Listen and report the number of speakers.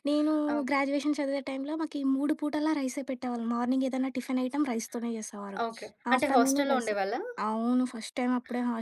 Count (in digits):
2